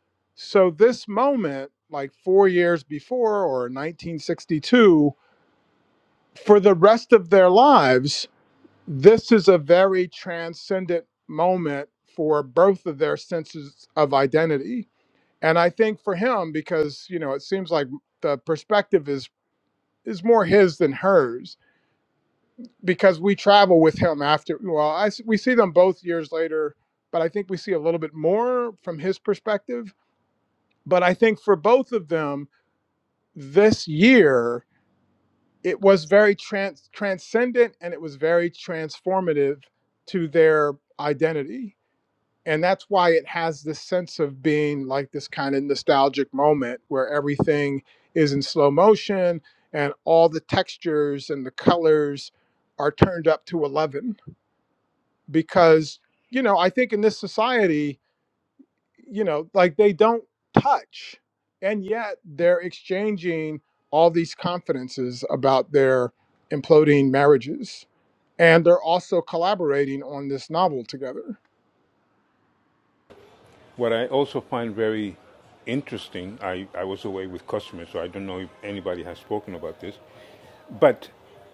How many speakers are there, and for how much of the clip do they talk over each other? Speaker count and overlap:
2, no overlap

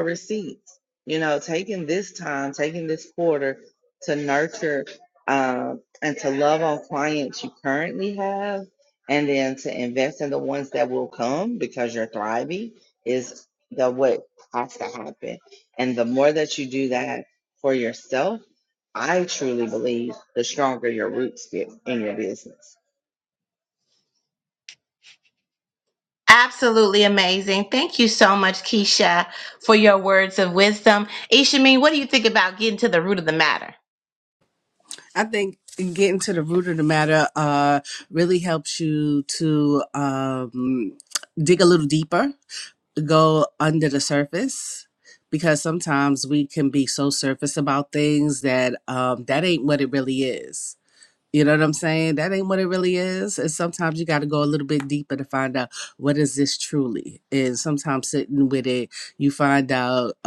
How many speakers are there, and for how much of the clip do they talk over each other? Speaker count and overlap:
3, no overlap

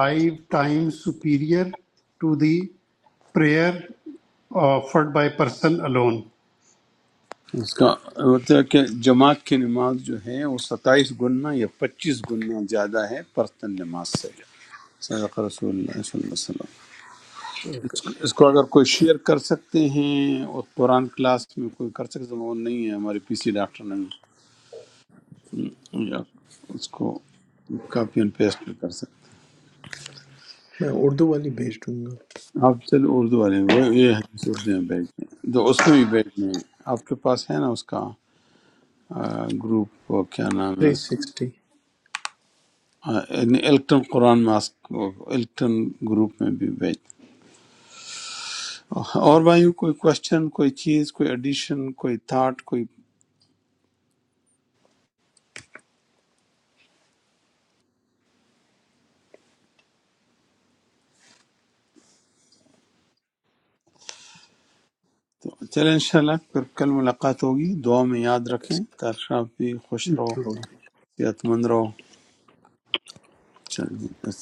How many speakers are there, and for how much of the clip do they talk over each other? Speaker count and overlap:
3, about 1%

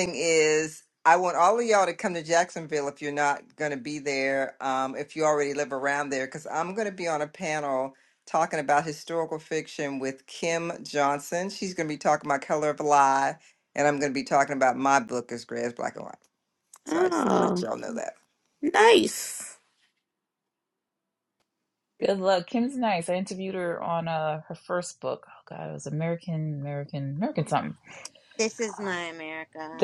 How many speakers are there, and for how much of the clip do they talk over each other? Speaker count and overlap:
4, about 3%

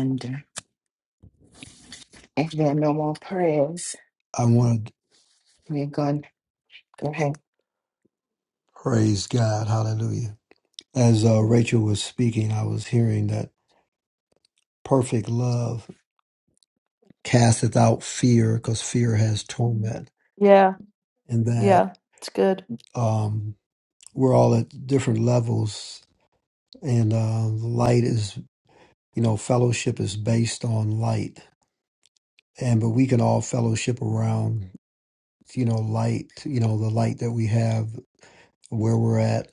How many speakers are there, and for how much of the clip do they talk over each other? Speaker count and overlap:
3, about 1%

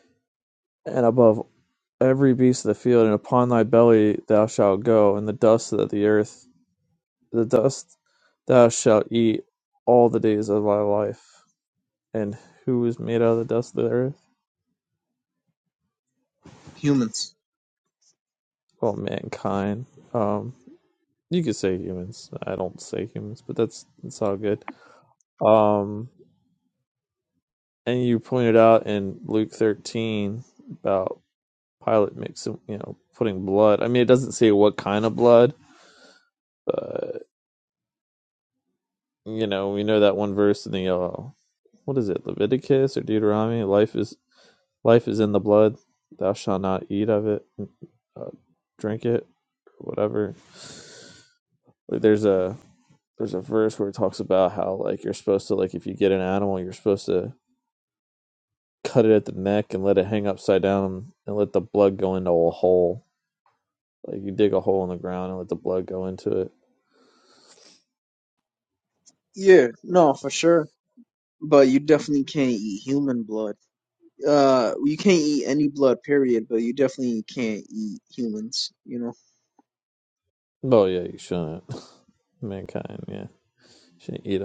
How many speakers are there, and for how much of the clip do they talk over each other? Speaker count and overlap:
2, no overlap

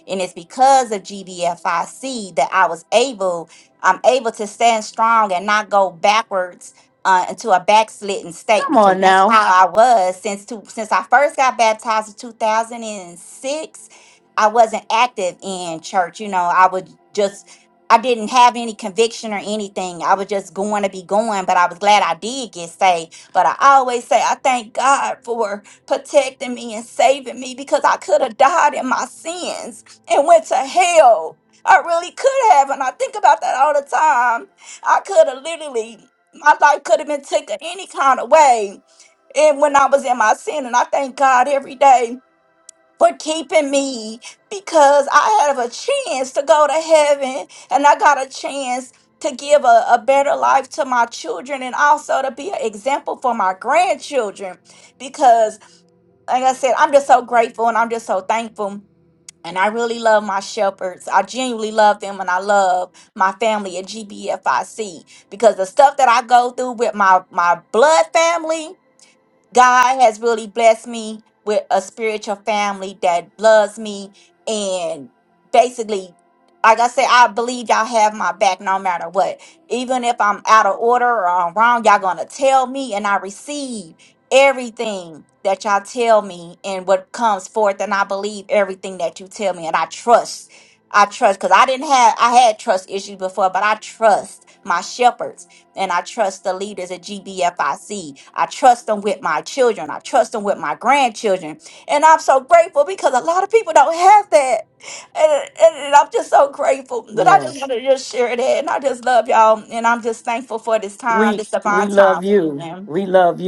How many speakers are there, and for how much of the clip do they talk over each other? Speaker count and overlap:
2, about 3%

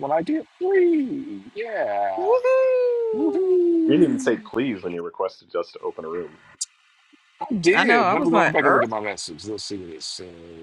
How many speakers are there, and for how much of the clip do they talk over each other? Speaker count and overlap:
3, about 16%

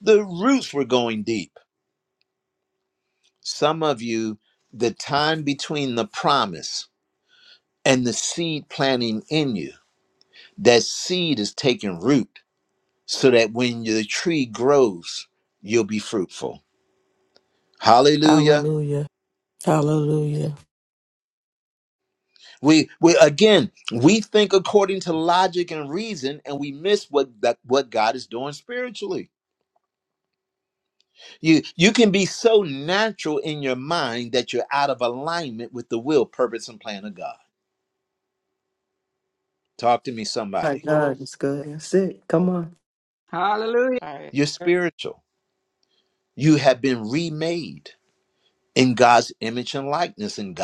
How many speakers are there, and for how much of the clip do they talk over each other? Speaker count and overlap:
4, about 1%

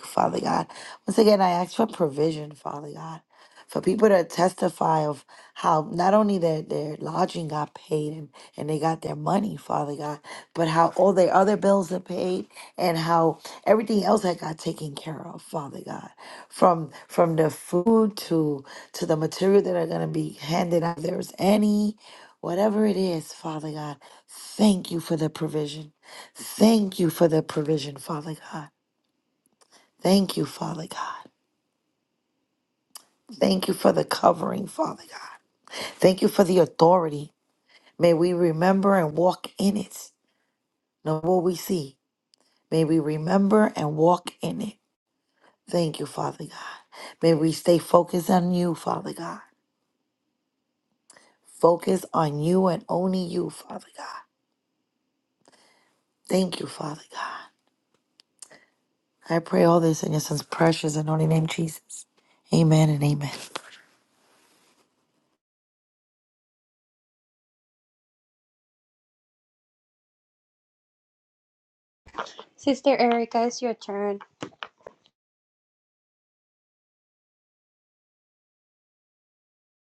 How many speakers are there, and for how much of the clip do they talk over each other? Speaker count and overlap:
2, no overlap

